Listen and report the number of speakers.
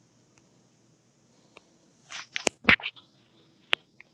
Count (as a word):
zero